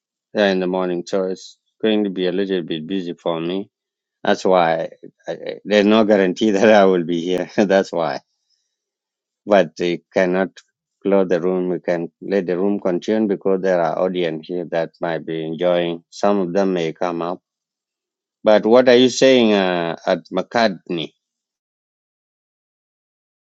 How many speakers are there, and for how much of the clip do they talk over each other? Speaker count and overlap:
one, no overlap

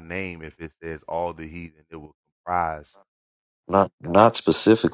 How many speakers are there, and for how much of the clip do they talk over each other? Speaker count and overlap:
two, no overlap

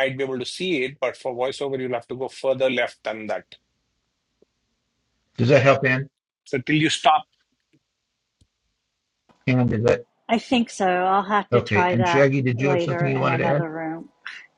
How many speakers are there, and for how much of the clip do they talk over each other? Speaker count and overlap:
three, about 15%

